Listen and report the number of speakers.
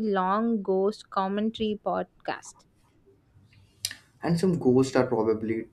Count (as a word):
two